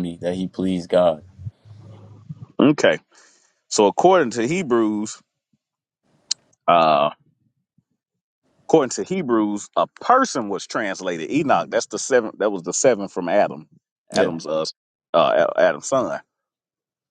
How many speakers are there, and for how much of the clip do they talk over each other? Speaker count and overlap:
two, about 2%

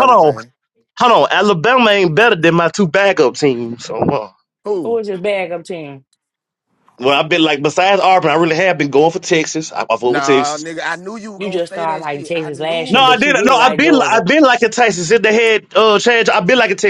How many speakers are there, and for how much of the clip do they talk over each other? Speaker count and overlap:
three, about 22%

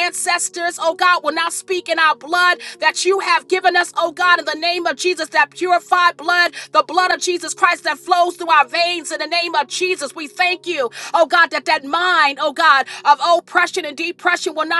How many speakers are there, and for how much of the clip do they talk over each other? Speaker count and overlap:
one, no overlap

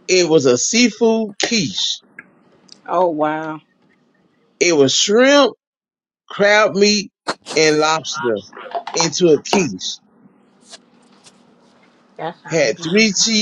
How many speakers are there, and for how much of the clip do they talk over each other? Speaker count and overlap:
two, about 4%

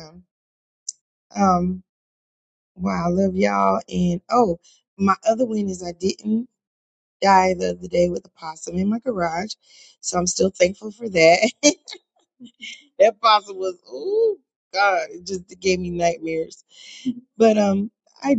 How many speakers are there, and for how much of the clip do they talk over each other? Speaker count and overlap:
one, no overlap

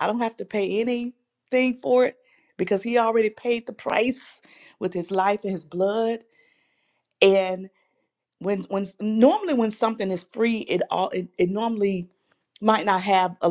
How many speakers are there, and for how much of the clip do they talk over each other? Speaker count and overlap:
one, no overlap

